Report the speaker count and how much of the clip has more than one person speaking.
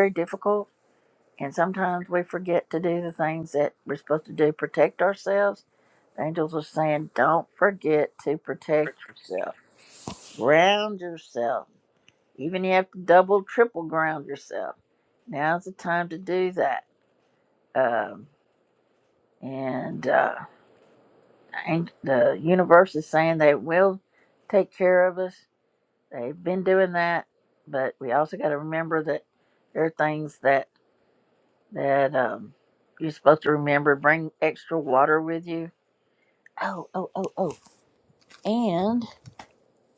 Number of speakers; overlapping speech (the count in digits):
1, no overlap